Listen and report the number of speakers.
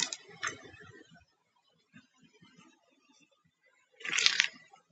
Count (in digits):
0